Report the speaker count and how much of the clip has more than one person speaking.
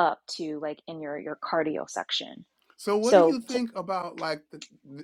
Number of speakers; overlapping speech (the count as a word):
two, about 10%